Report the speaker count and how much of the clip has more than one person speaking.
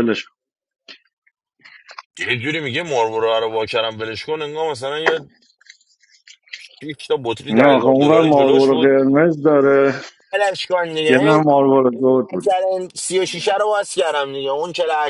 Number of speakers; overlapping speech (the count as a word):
two, about 15%